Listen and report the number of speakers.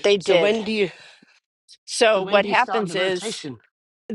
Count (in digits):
2